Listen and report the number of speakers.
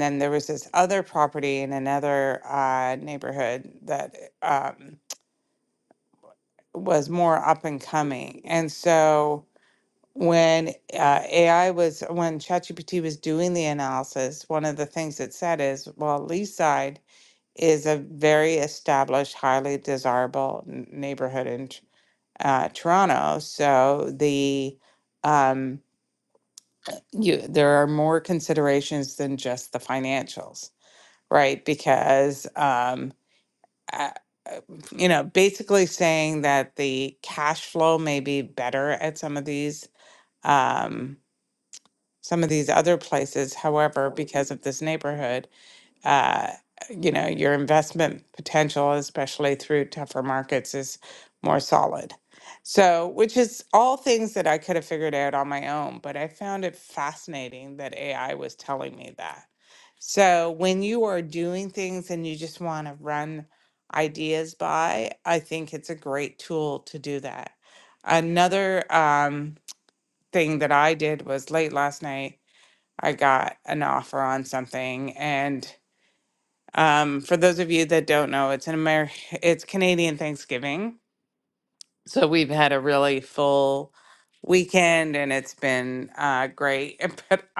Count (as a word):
one